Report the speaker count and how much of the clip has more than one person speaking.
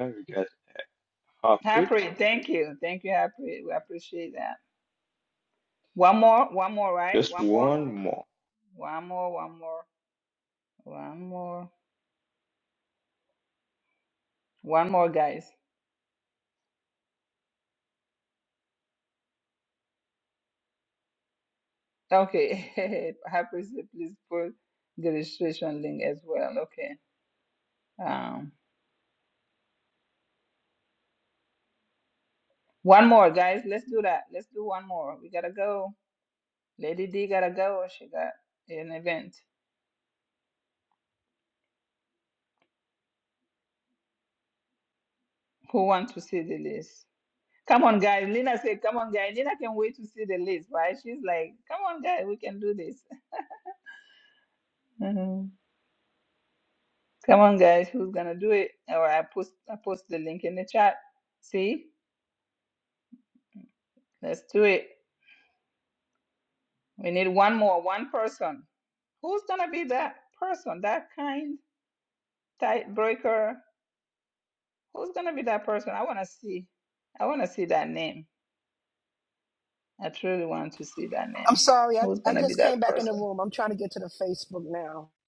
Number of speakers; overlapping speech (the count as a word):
three, about 3%